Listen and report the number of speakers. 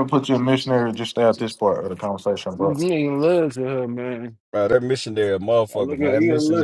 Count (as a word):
three